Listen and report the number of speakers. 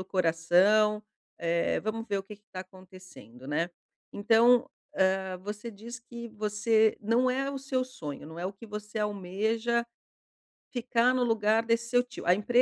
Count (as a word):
one